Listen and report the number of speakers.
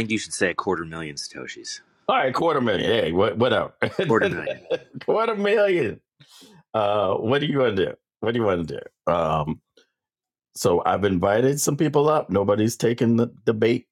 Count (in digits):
2